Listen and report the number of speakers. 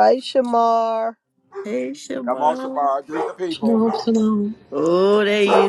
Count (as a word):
three